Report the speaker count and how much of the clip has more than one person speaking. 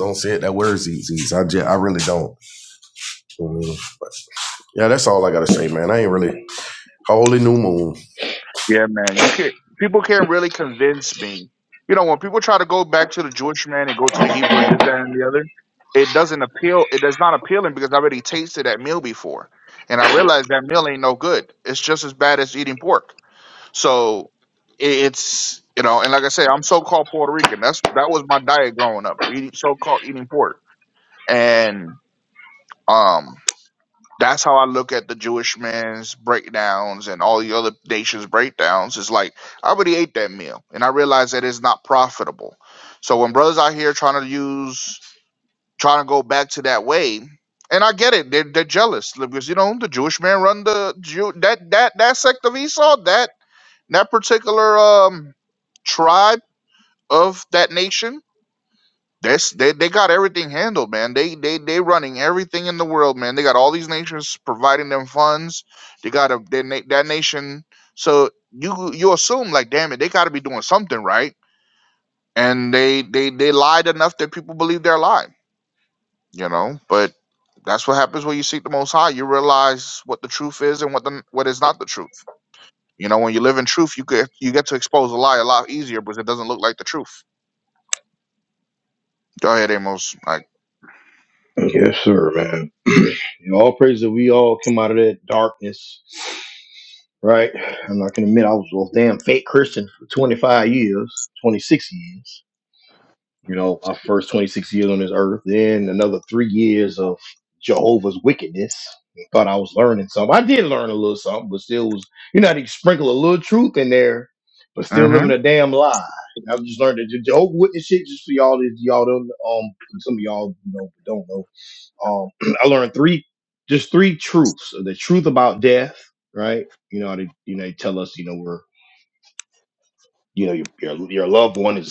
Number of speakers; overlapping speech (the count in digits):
3, under 1%